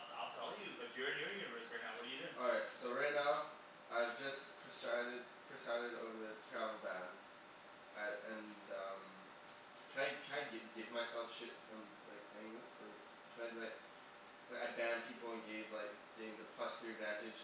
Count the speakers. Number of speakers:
2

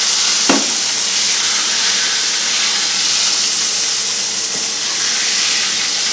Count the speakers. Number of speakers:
0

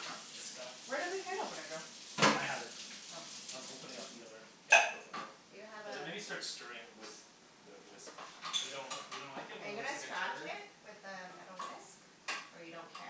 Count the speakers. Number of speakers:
4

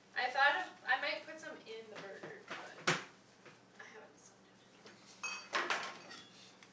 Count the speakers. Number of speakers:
1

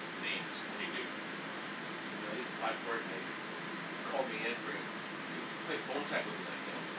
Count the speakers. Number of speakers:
1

